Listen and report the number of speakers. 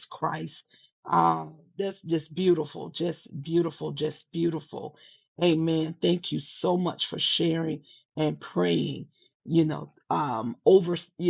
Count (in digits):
1